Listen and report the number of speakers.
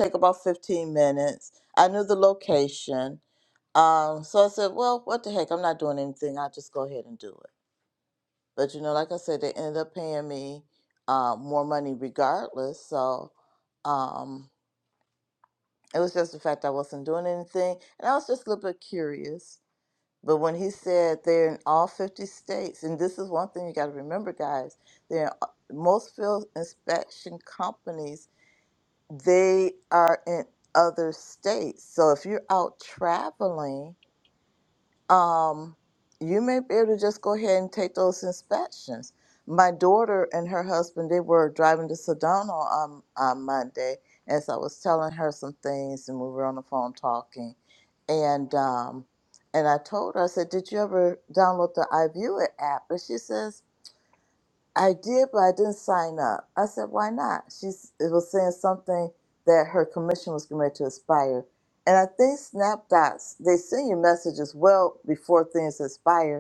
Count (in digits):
1